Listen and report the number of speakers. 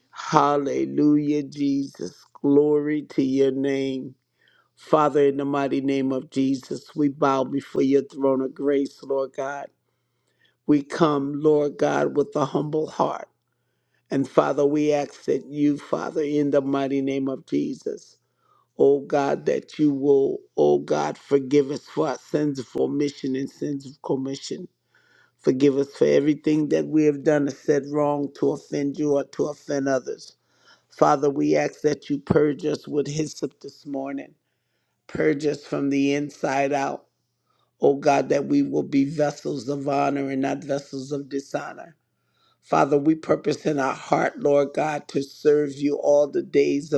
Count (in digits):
1